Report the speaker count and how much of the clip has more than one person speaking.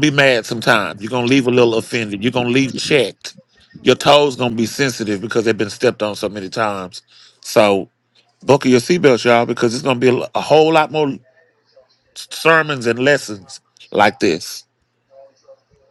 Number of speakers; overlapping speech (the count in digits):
1, no overlap